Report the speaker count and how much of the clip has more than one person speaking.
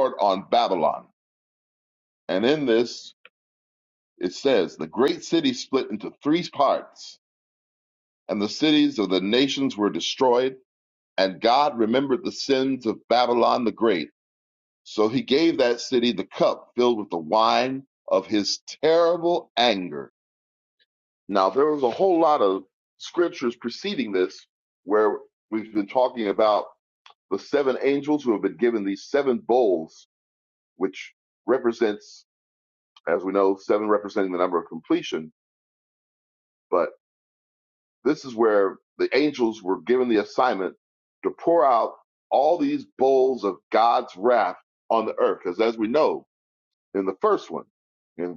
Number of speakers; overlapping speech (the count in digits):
1, no overlap